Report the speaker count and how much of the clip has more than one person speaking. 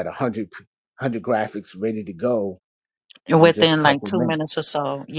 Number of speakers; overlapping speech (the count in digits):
2, about 19%